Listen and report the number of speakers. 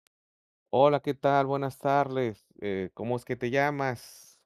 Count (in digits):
1